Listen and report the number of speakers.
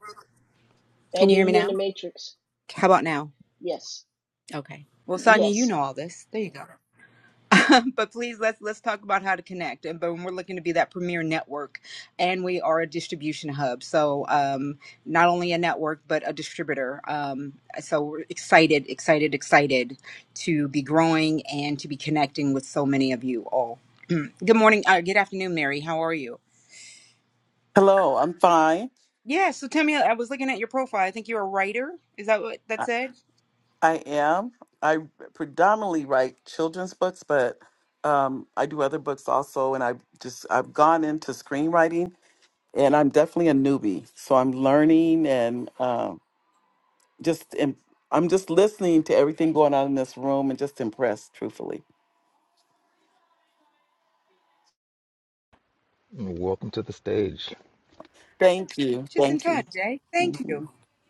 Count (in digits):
4